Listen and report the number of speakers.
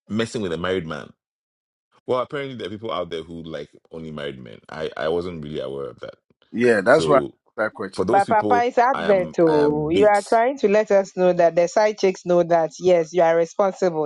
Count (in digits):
3